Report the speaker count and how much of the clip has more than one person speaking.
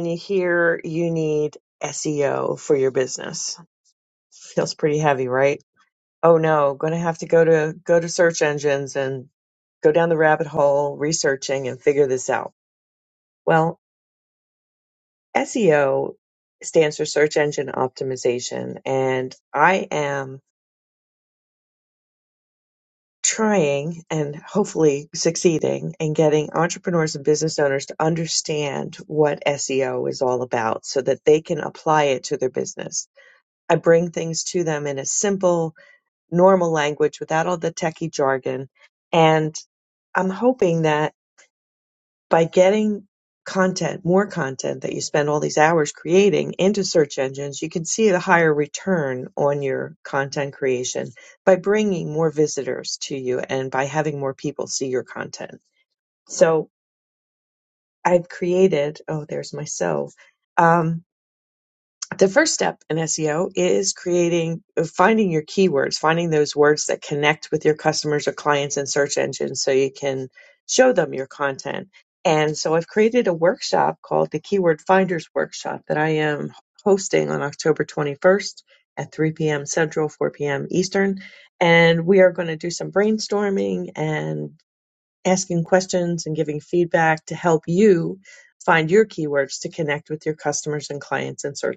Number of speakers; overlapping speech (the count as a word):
one, no overlap